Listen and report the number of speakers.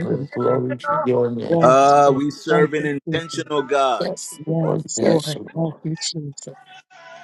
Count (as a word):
three